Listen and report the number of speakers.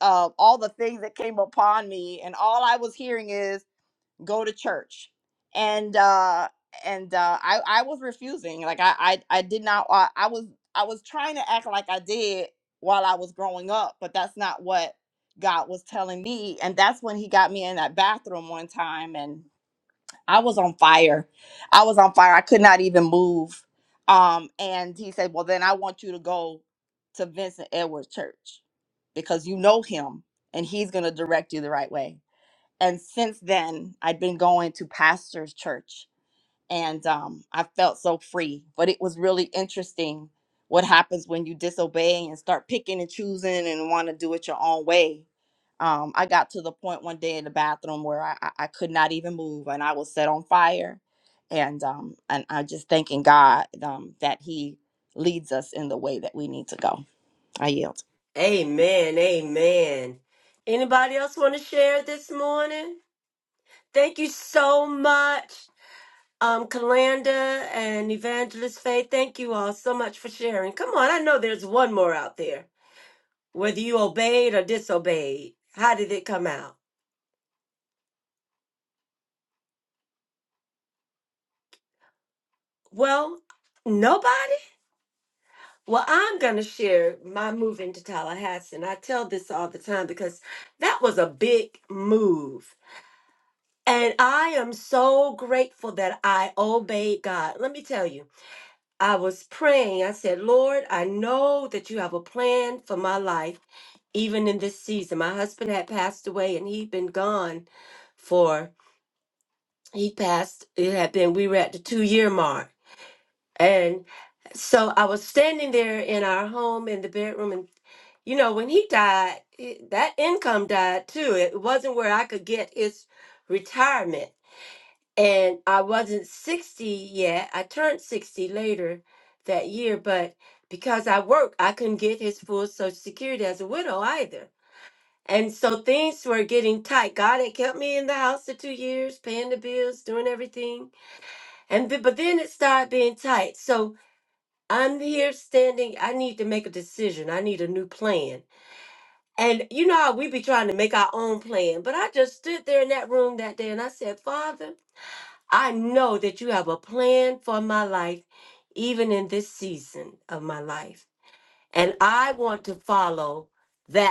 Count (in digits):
2